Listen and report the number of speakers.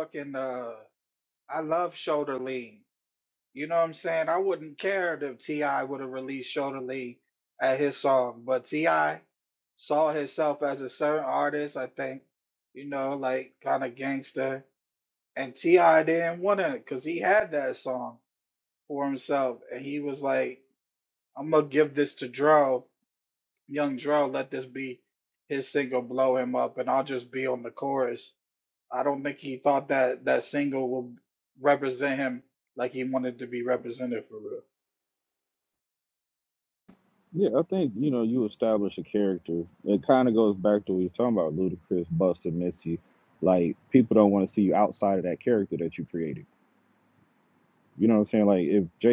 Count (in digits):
2